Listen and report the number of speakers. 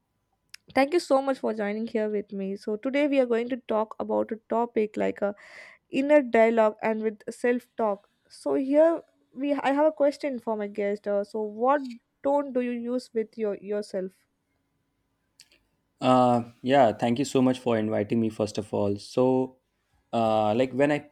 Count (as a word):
two